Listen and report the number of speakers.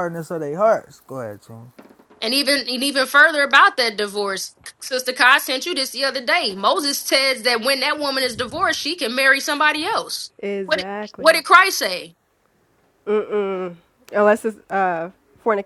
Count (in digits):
3